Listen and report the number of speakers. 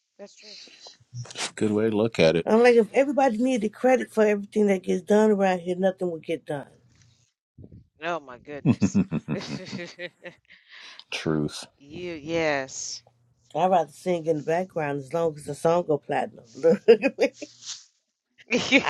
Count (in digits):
3